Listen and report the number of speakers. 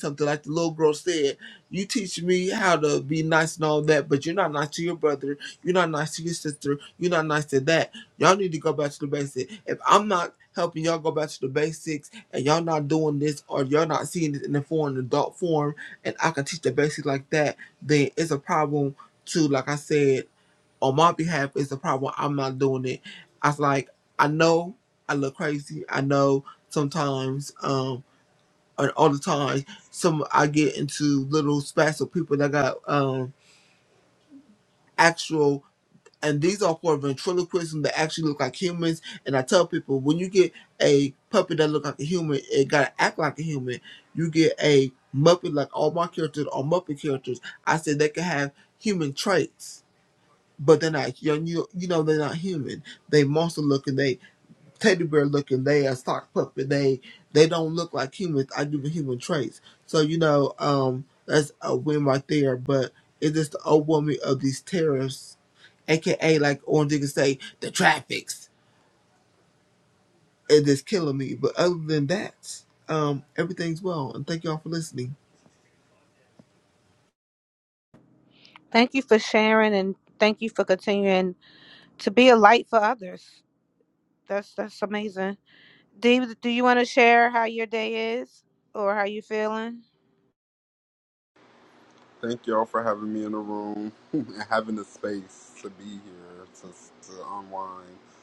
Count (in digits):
3